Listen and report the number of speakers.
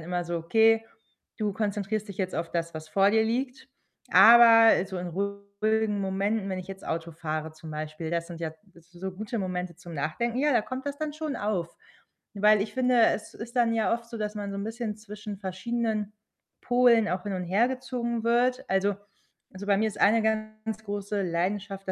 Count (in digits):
1